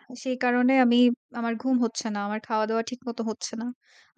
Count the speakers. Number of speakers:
1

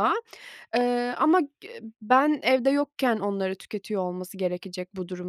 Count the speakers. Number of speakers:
1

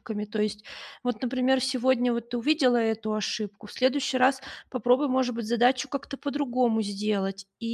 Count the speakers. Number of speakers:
1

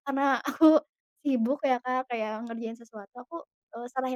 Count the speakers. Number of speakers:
1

